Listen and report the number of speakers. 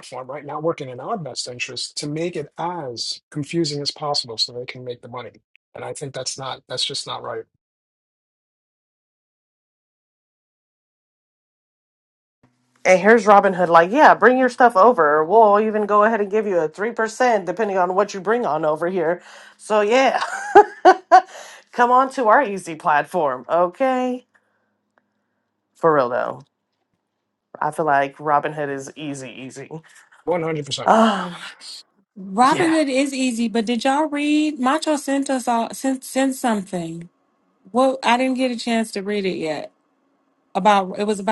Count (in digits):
3